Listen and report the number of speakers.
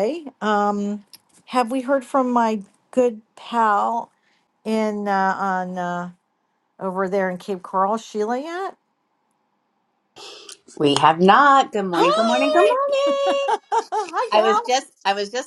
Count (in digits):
2